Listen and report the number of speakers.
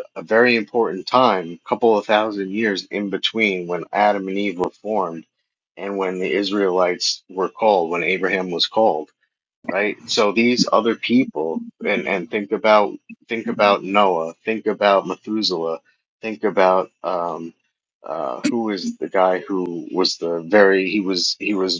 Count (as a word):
one